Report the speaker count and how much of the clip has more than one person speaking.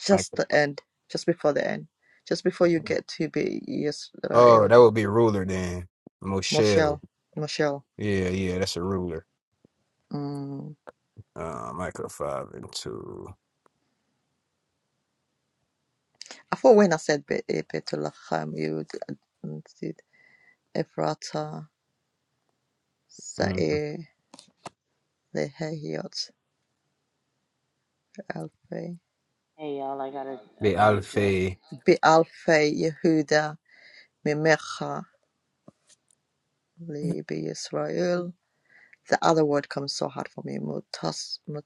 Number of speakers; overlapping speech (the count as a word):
three, about 5%